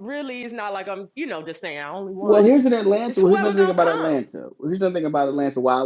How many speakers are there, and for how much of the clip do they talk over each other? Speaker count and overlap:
two, about 23%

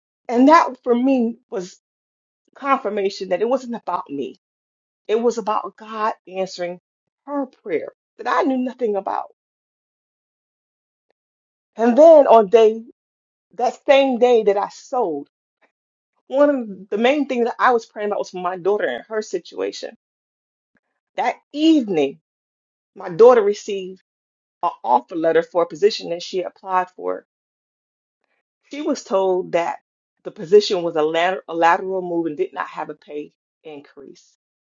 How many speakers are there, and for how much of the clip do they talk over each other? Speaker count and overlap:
one, no overlap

